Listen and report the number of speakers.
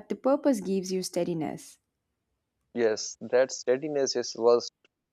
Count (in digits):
2